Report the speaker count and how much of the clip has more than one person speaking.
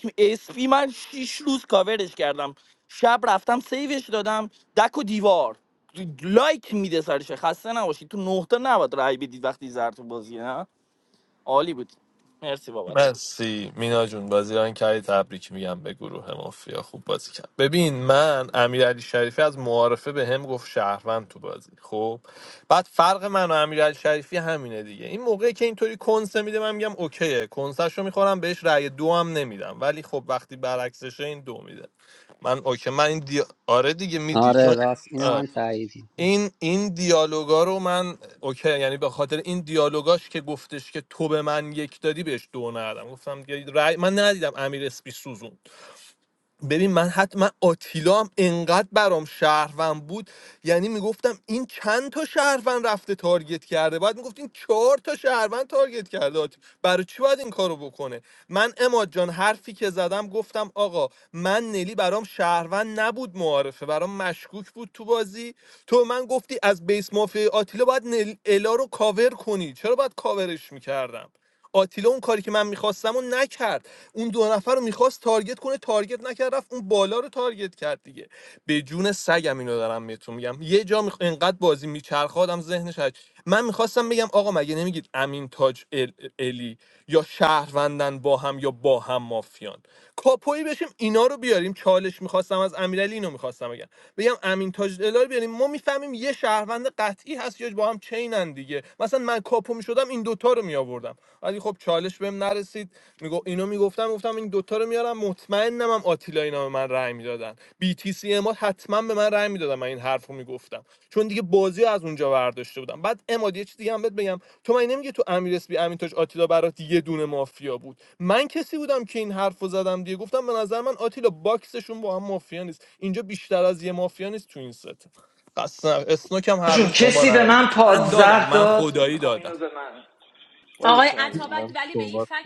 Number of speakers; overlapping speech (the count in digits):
5, about 3%